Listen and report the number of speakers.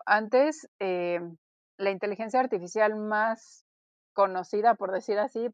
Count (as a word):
one